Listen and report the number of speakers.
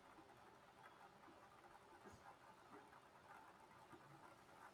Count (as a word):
zero